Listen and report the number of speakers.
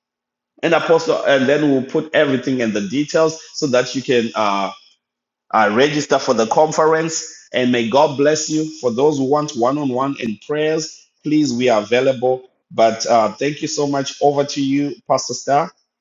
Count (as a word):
one